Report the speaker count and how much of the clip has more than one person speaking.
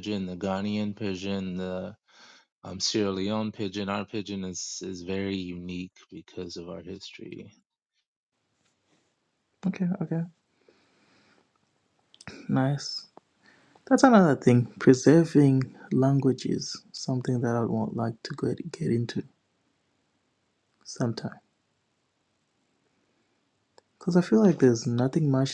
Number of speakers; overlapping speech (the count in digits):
2, no overlap